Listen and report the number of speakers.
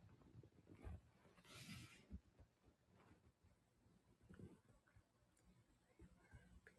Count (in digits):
0